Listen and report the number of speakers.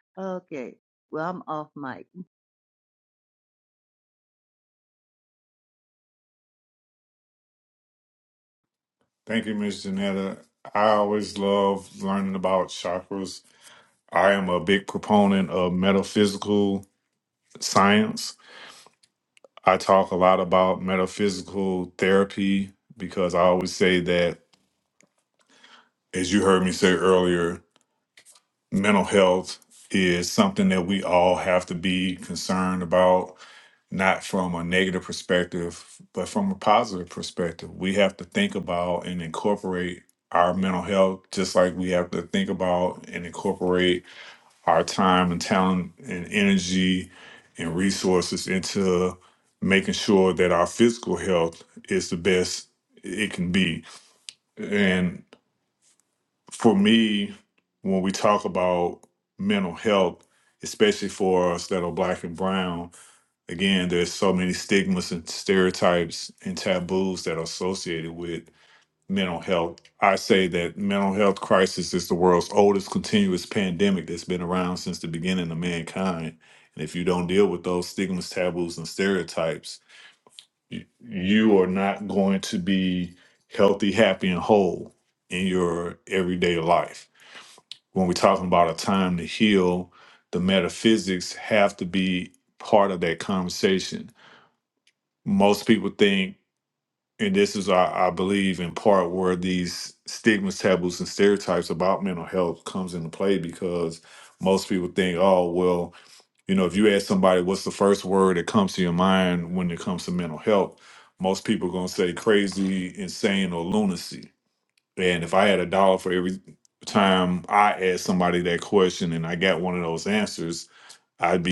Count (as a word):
two